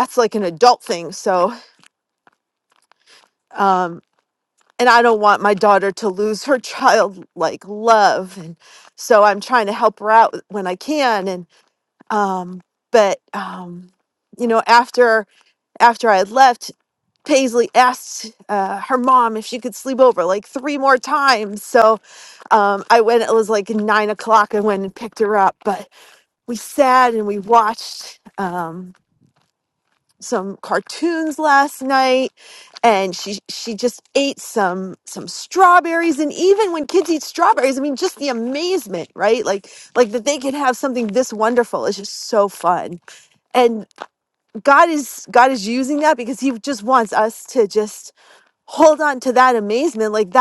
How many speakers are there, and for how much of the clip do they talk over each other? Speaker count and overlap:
one, no overlap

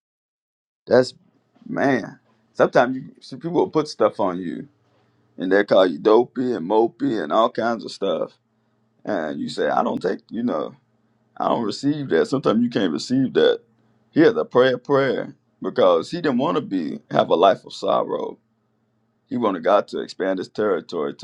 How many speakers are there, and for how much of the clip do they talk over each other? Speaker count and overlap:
one, no overlap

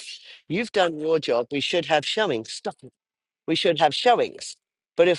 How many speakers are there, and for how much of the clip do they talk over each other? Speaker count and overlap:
one, no overlap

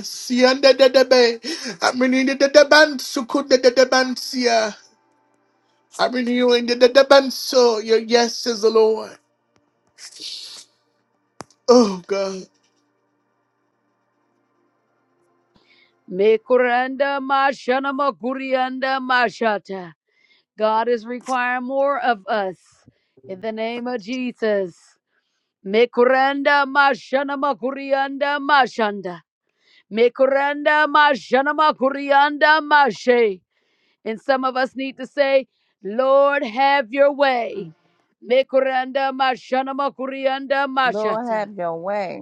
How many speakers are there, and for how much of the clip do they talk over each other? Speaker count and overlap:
three, about 1%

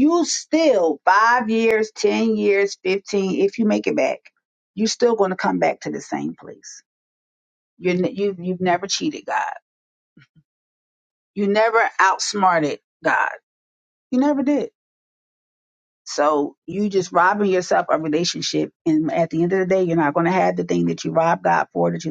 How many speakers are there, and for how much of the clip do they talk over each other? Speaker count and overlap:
one, no overlap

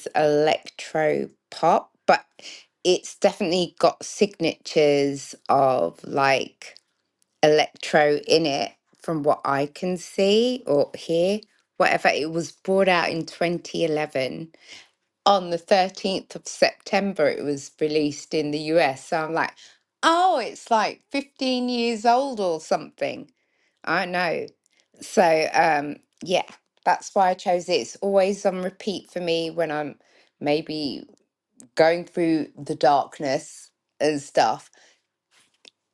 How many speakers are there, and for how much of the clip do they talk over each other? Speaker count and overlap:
one, no overlap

